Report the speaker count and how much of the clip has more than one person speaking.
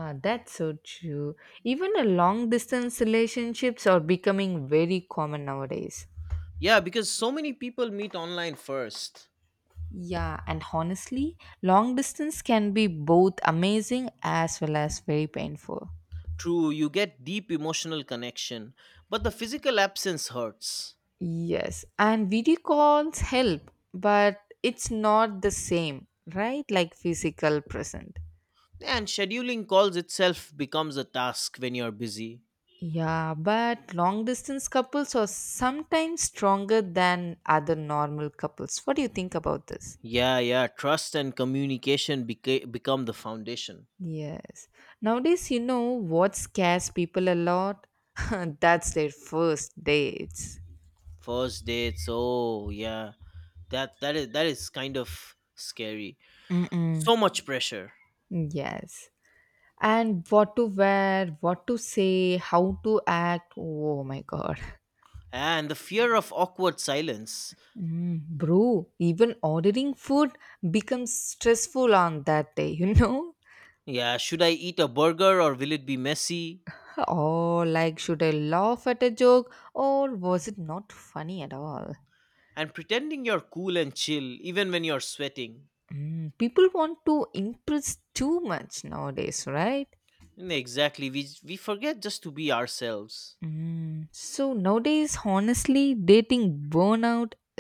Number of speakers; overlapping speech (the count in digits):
2, under 1%